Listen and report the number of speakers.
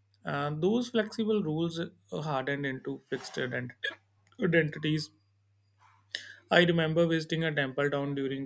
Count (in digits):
1